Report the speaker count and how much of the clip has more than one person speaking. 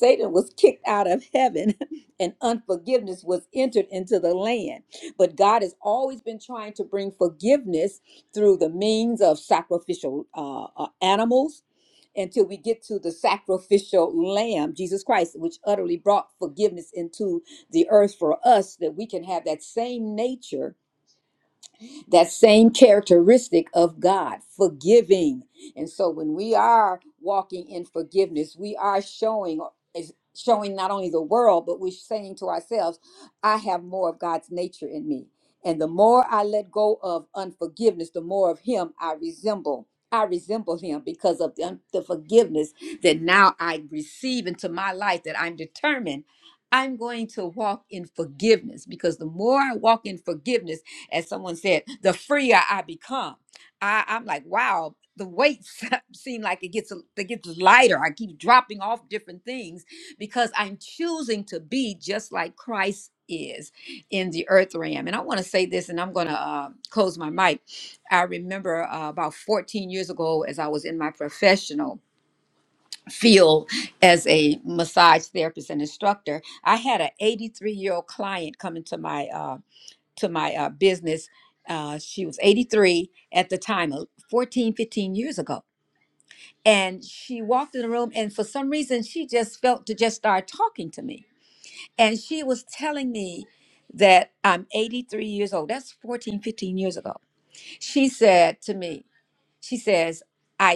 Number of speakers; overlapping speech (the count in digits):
1, no overlap